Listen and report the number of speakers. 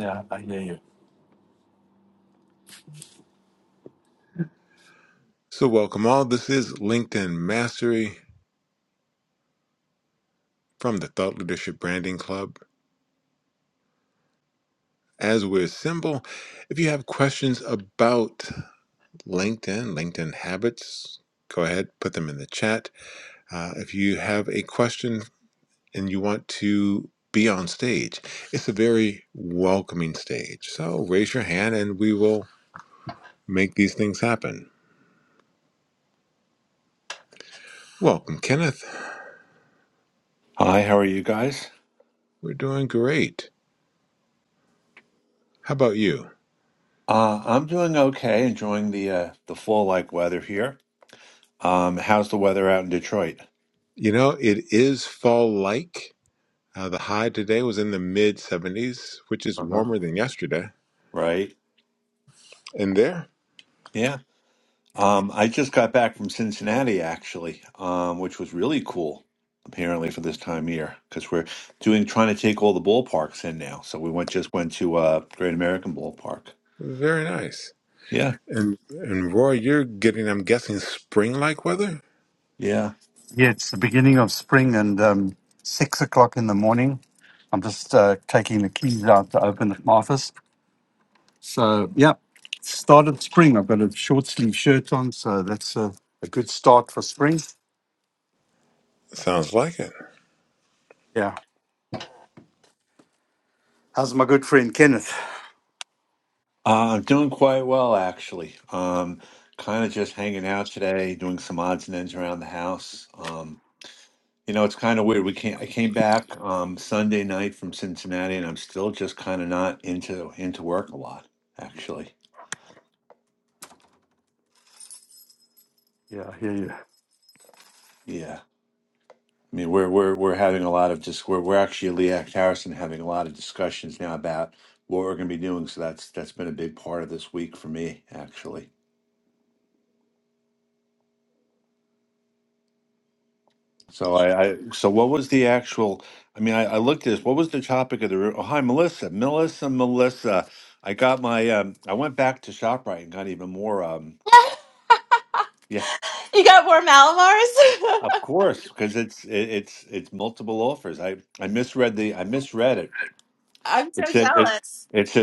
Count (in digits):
4